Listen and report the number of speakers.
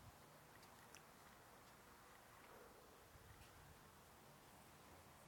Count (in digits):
0